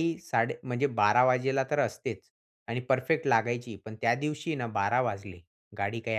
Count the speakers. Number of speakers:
one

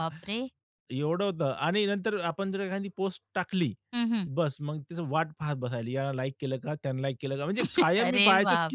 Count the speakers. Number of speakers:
two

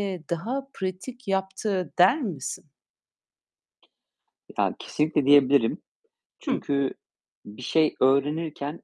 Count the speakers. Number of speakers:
two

